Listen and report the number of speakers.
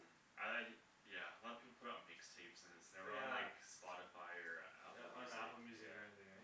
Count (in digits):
2